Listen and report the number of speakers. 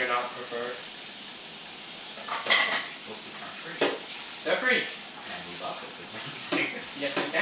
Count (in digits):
2